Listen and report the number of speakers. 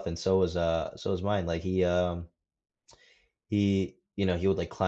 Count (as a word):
one